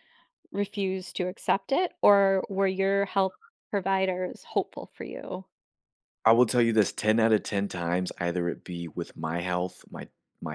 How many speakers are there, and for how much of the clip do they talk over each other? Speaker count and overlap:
2, no overlap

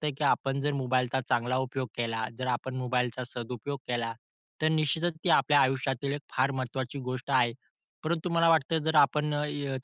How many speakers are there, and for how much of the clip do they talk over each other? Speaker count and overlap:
1, no overlap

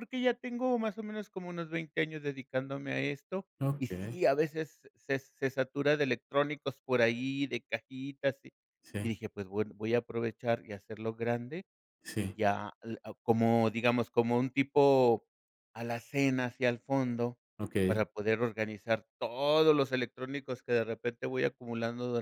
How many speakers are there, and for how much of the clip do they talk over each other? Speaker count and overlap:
2, about 3%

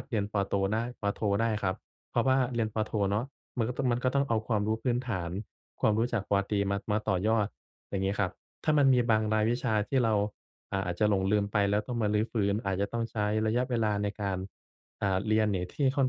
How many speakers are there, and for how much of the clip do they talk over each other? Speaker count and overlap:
1, no overlap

